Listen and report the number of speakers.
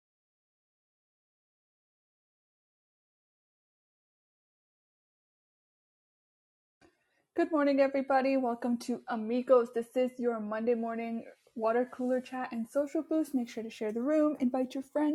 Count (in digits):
1